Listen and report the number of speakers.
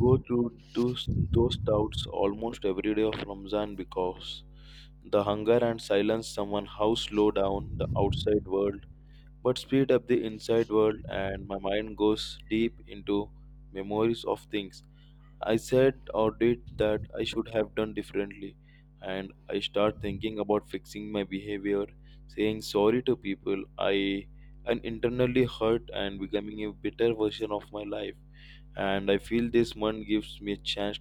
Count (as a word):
one